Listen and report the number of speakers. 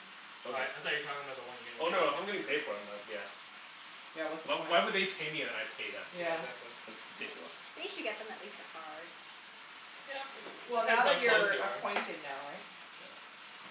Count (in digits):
4